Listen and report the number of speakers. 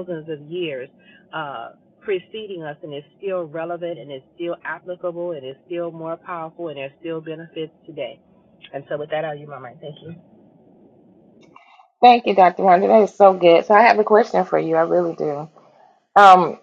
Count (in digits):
2